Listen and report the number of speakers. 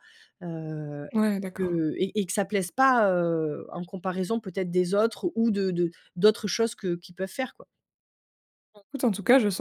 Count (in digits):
2